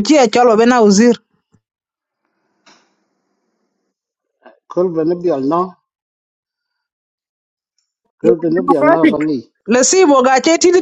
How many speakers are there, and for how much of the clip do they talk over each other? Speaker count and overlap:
2, about 9%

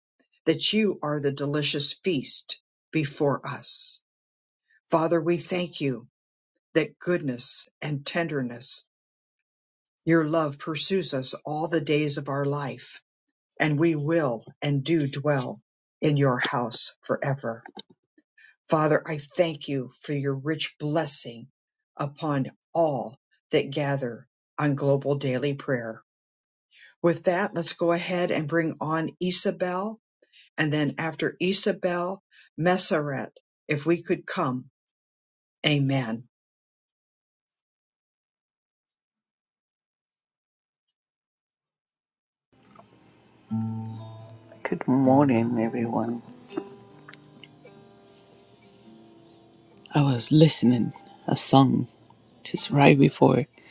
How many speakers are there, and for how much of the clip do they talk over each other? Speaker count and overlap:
2, no overlap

